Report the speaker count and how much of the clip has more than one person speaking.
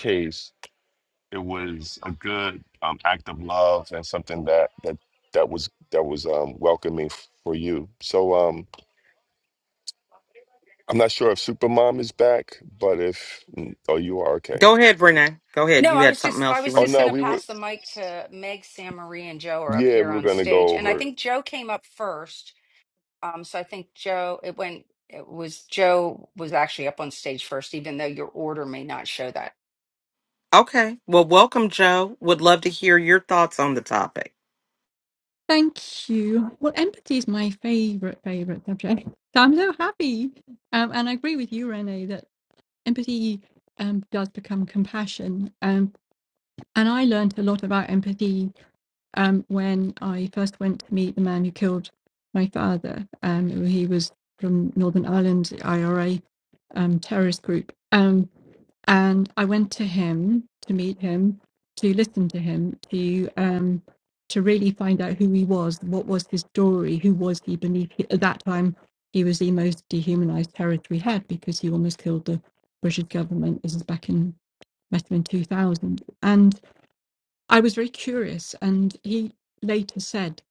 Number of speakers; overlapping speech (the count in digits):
4, about 4%